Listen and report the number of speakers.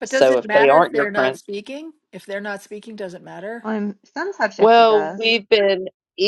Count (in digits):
3